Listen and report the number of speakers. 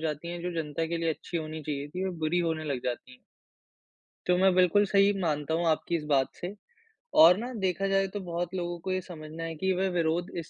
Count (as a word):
one